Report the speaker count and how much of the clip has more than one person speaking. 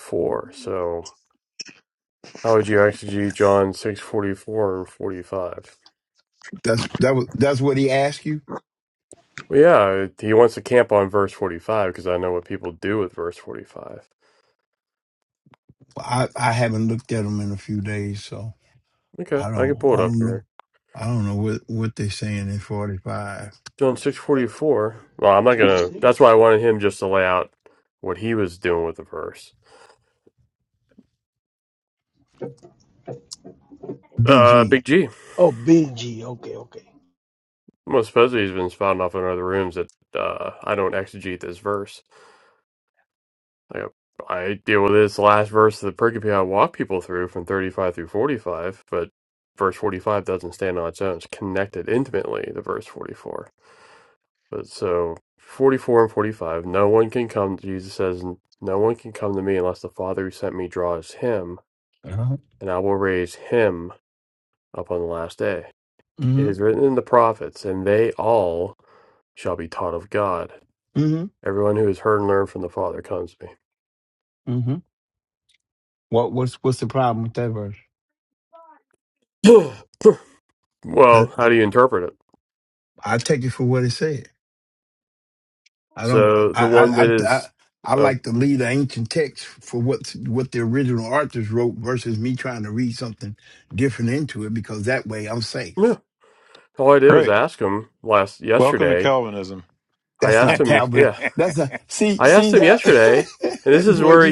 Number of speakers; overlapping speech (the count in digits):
4, about 7%